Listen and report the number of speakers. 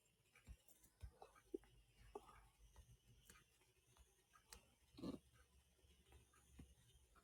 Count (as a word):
zero